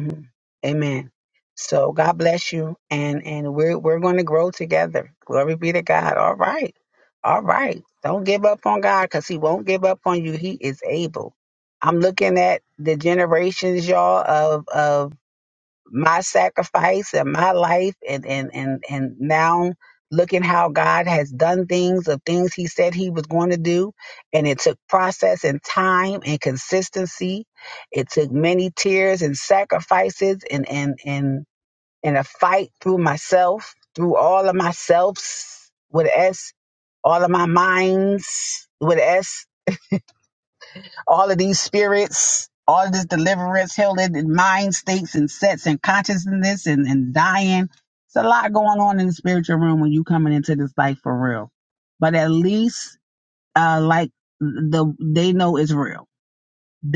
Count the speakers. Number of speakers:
one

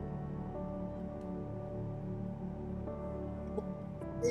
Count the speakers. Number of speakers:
zero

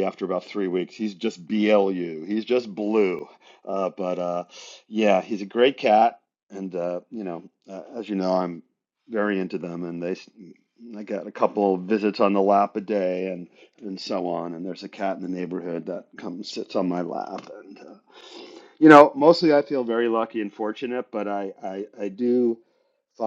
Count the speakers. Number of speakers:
one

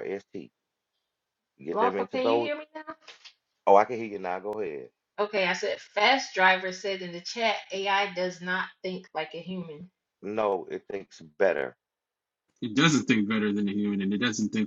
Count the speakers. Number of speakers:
three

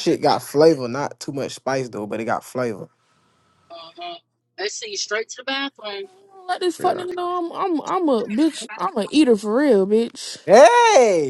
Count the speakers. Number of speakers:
three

